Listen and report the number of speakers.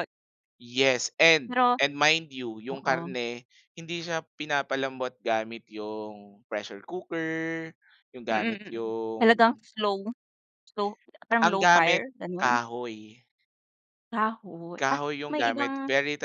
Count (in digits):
2